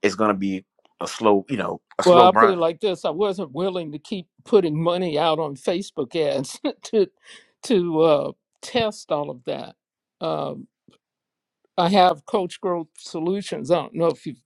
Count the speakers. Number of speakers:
two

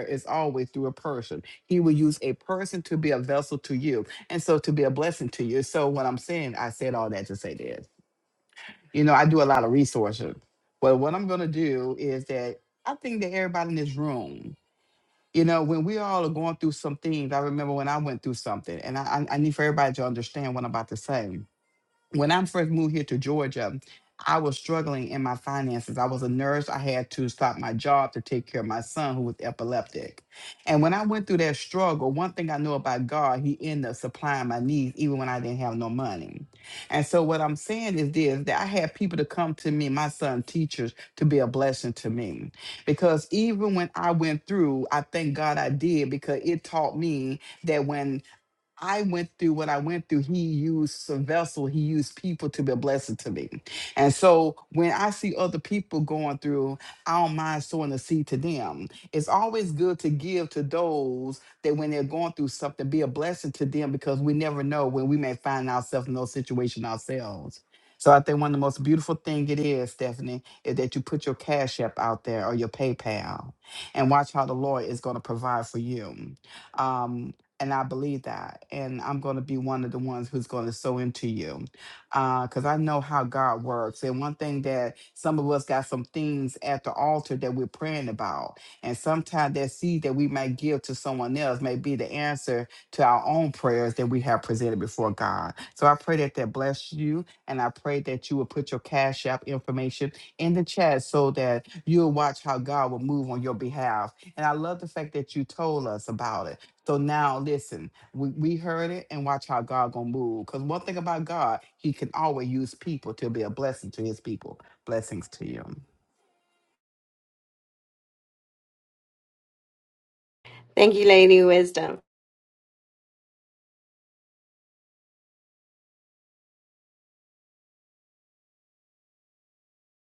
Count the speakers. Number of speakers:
two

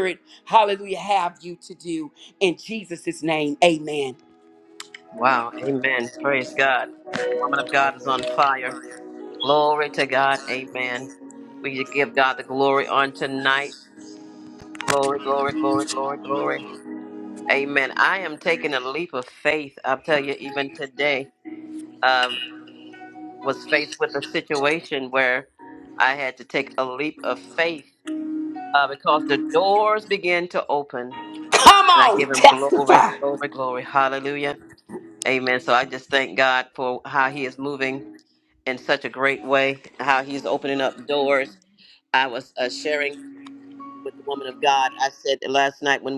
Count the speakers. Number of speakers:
two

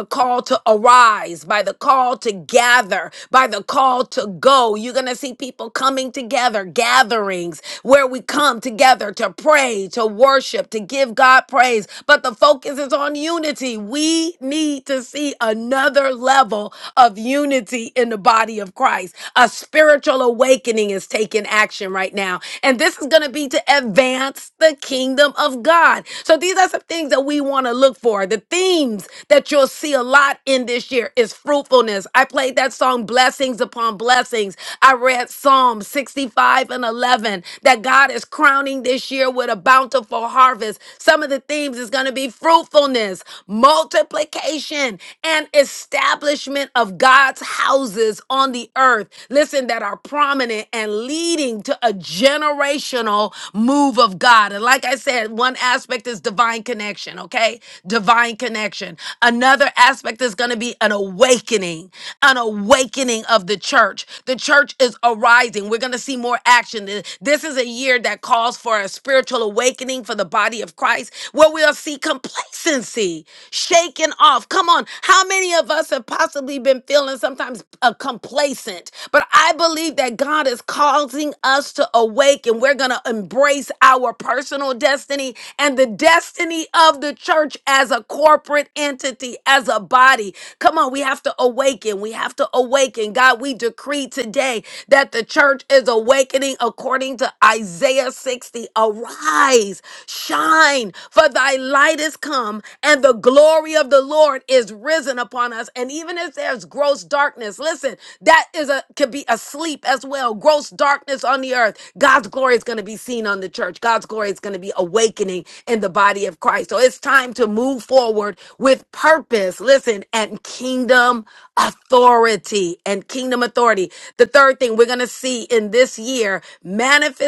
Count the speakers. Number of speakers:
one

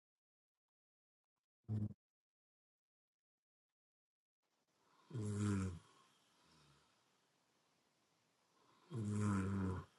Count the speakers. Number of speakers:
zero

